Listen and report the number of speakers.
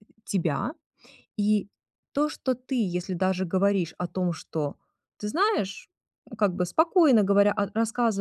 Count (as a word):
one